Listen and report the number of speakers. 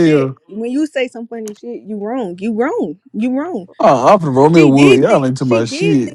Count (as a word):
two